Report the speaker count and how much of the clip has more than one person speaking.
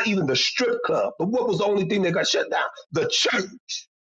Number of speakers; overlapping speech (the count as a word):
one, no overlap